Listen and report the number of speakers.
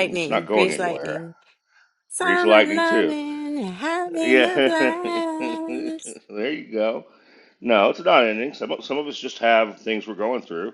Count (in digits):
2